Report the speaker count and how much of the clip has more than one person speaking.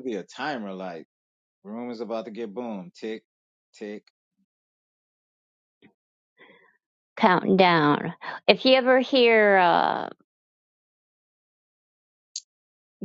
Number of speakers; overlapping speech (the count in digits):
2, no overlap